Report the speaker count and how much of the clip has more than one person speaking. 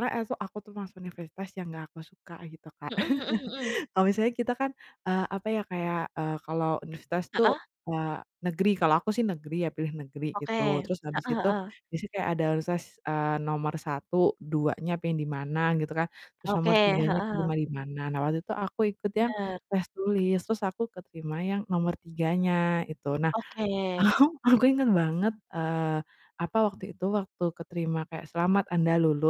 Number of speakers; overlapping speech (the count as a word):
two, about 8%